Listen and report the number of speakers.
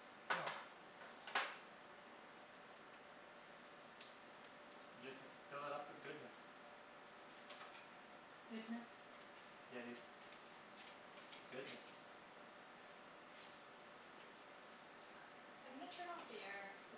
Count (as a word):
two